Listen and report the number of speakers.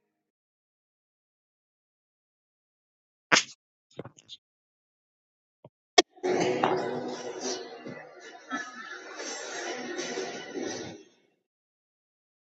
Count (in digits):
0